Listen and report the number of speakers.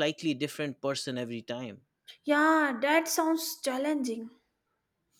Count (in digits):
2